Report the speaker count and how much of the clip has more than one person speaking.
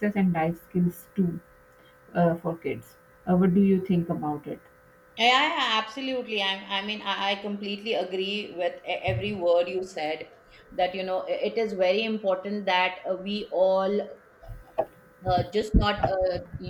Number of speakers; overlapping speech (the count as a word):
two, no overlap